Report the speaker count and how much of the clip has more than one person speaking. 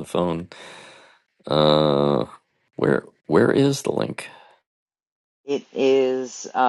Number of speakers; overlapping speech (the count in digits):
2, no overlap